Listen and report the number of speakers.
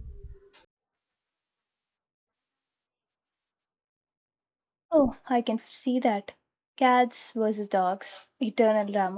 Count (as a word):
one